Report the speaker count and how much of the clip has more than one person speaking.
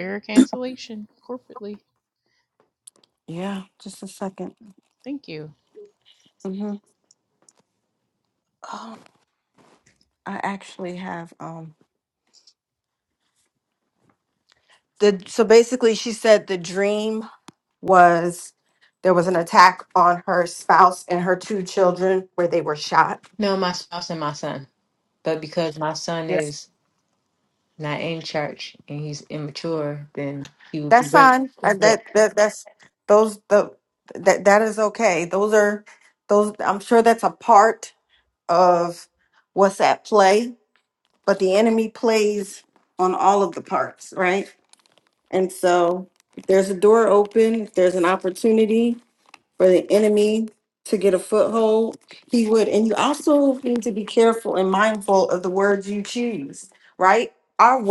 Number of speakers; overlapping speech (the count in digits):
3, about 1%